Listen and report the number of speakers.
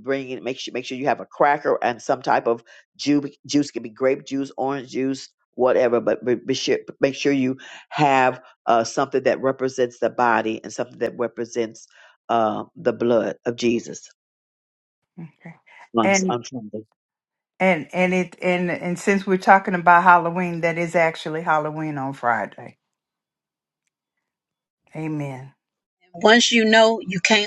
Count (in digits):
3